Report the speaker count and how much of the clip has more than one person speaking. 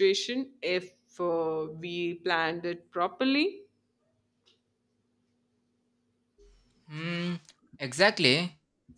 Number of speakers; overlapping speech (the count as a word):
two, no overlap